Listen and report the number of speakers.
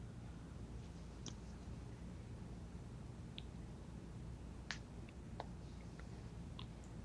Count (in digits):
0